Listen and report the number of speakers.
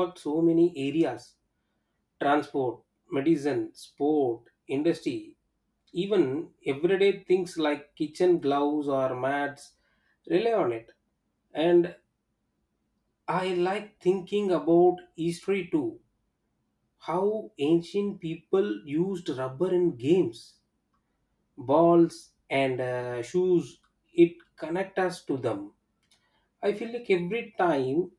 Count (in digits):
1